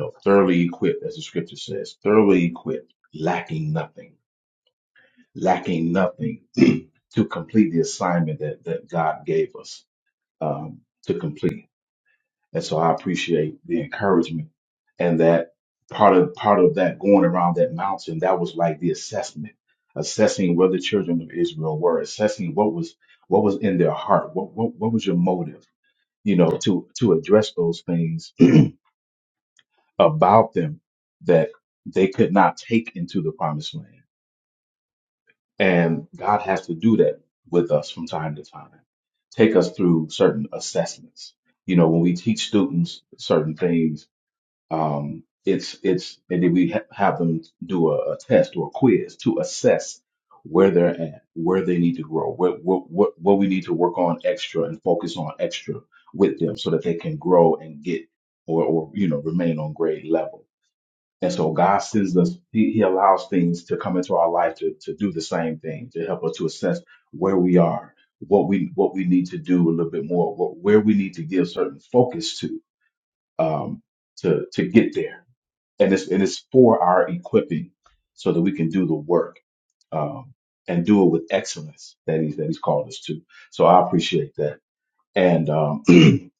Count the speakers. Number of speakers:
one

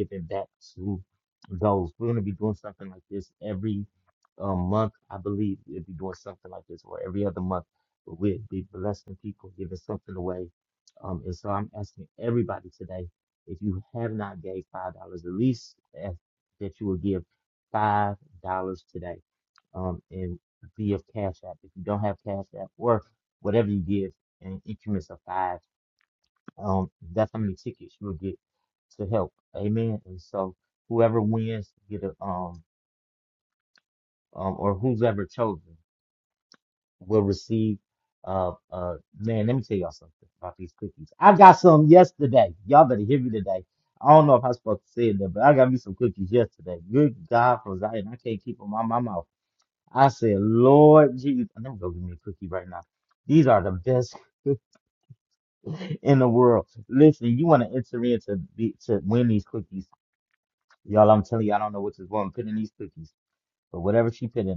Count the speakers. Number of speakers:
one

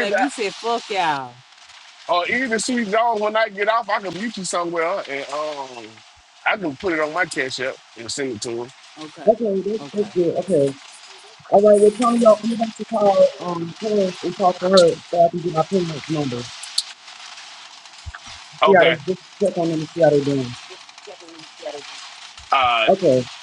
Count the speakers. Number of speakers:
three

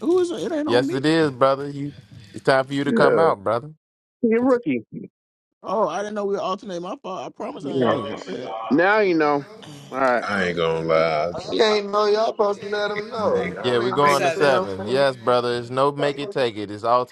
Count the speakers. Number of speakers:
five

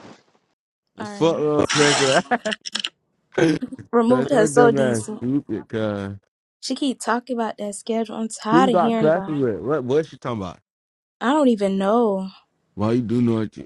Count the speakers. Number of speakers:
two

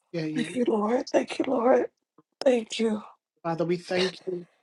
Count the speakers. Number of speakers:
two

